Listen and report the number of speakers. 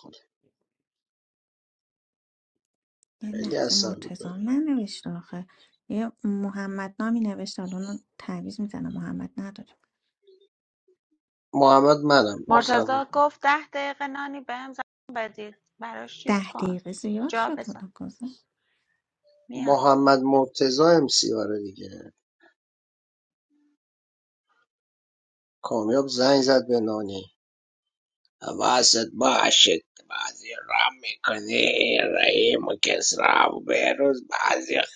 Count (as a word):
three